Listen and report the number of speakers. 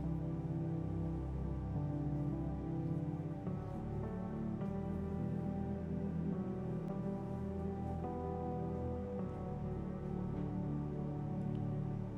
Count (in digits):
0